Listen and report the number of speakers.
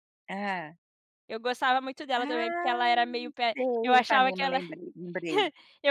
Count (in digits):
2